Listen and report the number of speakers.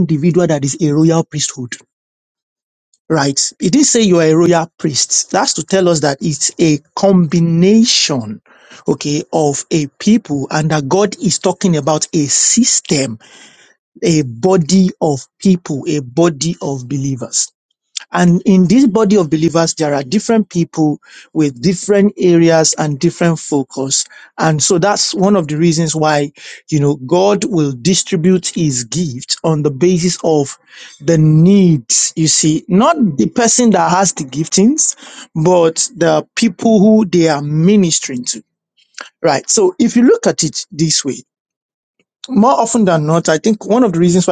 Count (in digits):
1